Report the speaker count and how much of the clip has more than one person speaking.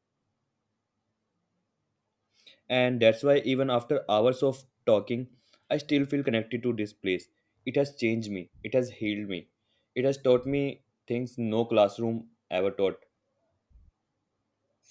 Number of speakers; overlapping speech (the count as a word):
one, no overlap